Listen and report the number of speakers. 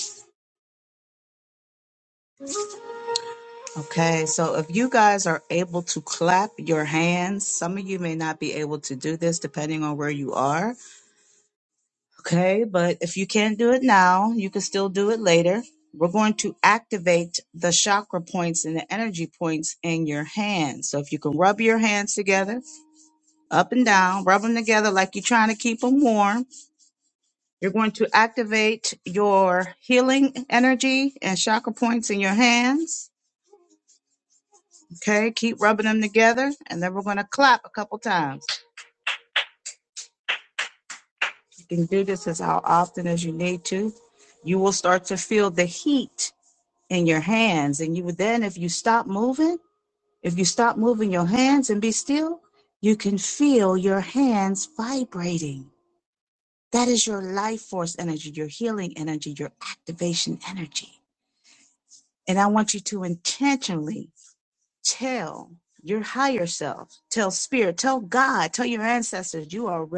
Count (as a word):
one